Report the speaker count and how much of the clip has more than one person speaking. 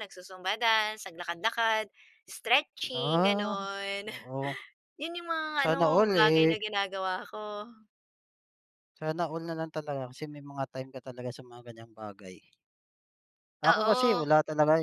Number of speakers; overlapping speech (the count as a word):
two, about 16%